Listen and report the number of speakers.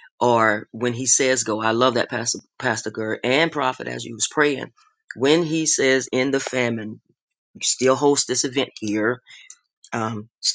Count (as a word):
one